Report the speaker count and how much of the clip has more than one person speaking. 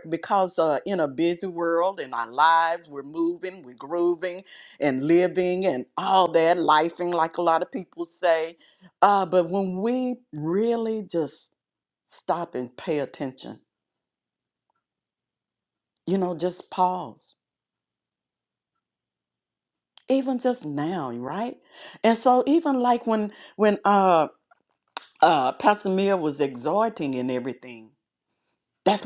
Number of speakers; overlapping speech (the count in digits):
1, no overlap